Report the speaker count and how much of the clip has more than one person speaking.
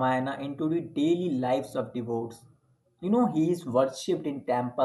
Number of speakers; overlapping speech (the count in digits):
1, no overlap